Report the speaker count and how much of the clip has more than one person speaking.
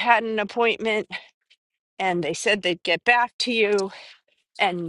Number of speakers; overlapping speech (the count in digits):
1, no overlap